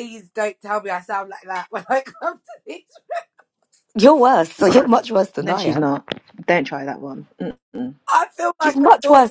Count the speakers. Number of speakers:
3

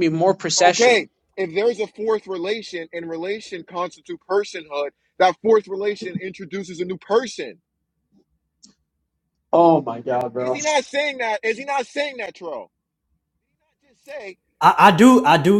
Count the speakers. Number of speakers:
3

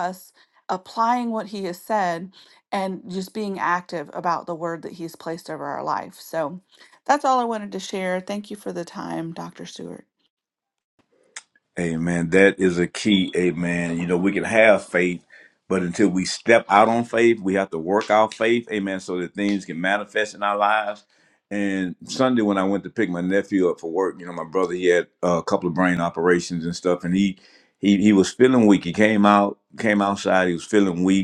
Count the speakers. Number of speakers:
2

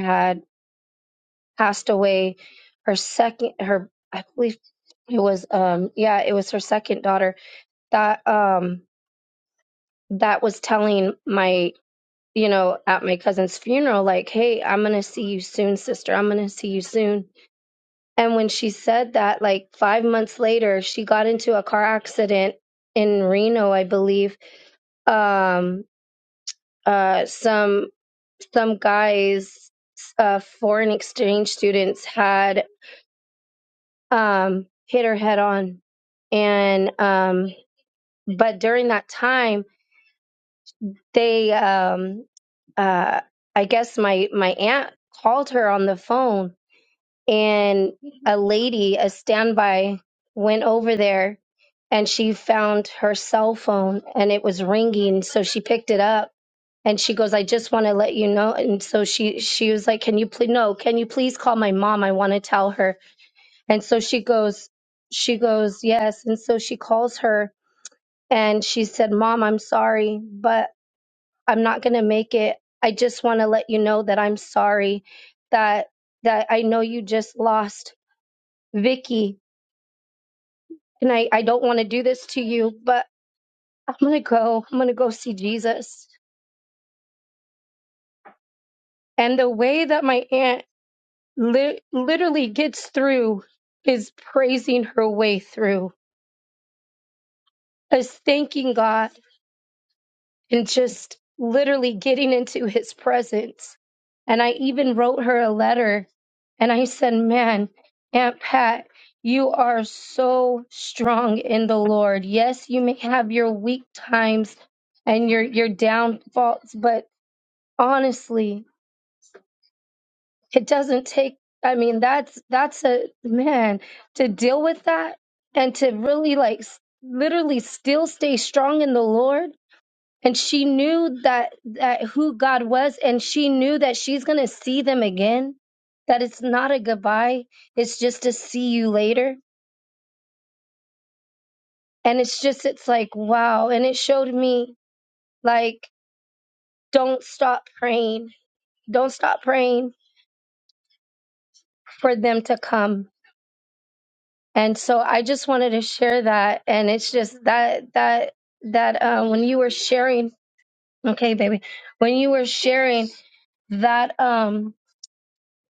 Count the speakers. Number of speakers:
1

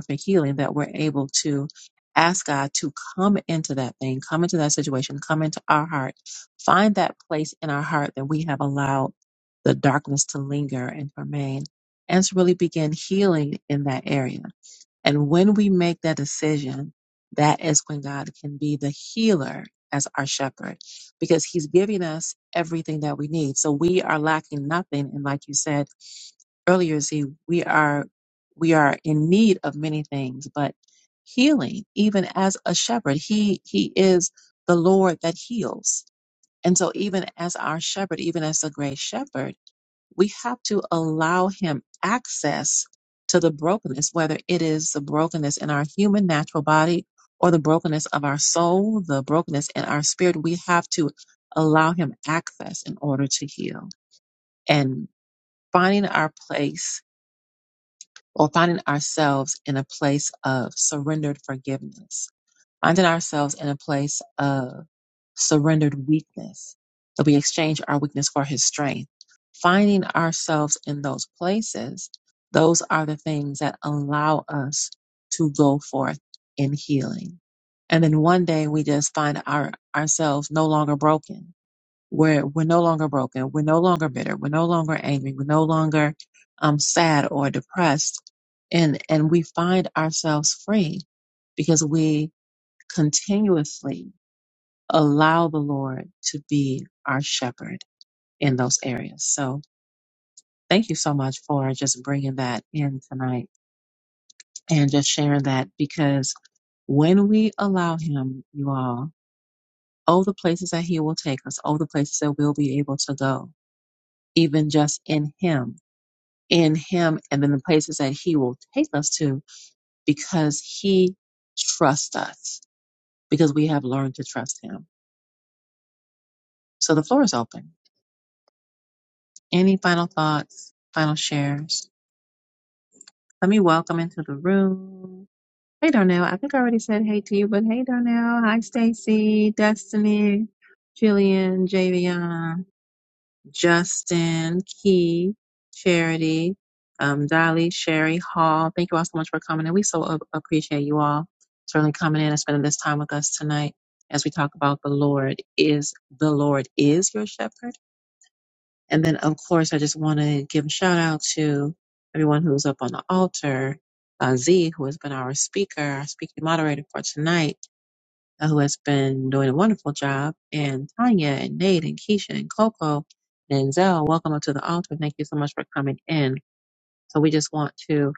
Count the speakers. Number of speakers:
1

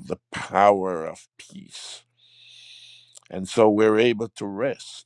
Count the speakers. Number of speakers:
1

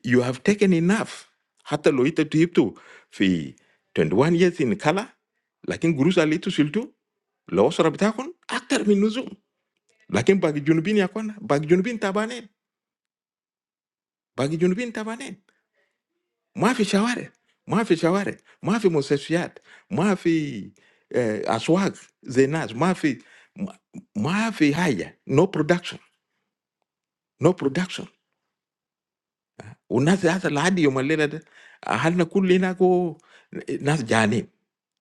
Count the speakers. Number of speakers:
1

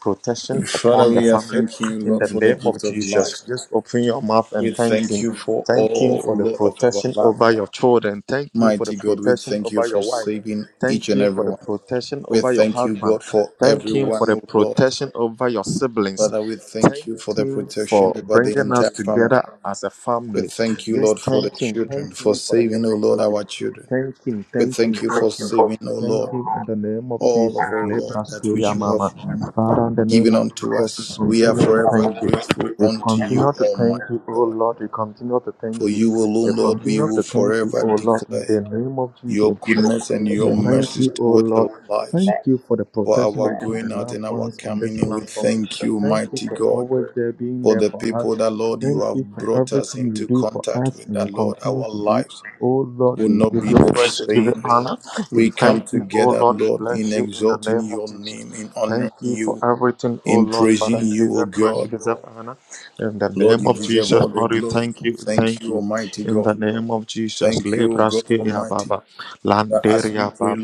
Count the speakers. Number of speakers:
2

